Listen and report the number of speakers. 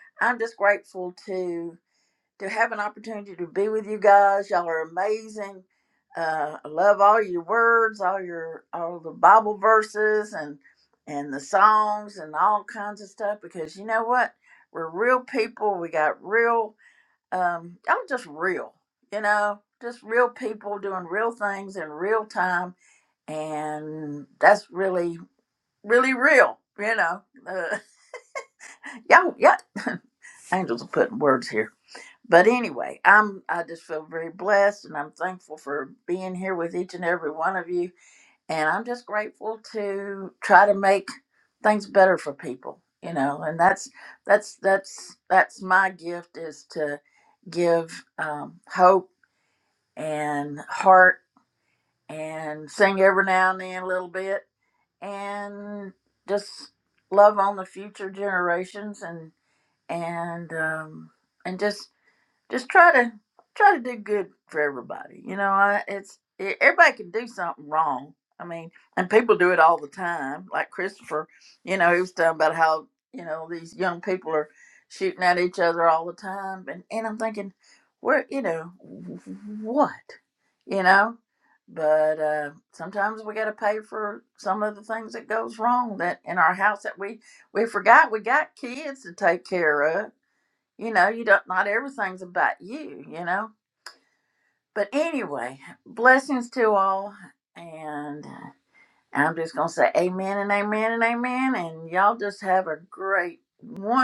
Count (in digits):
1